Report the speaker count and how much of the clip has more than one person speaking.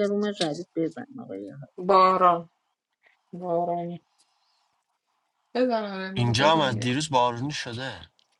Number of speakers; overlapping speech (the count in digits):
3, about 8%